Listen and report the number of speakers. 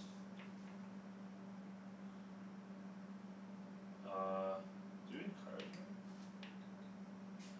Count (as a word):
one